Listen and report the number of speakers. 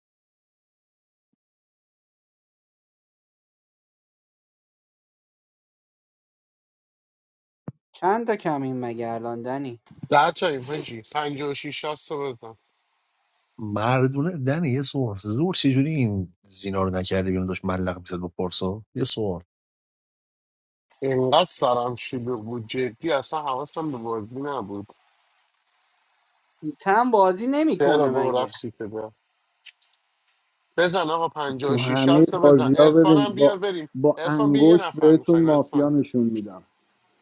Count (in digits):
4